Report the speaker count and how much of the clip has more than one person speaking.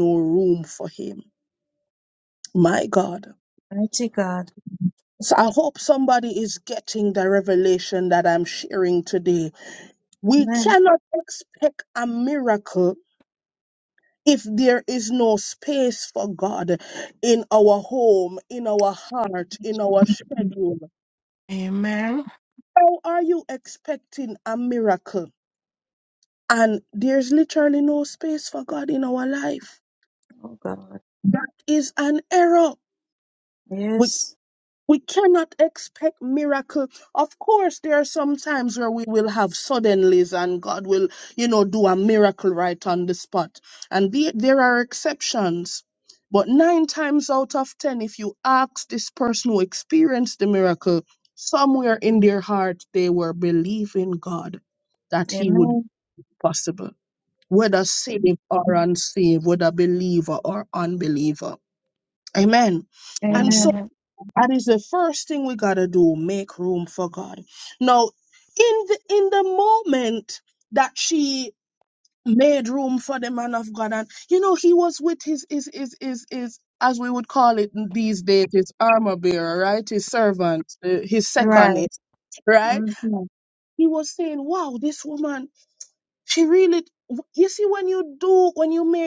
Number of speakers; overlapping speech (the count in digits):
3, about 3%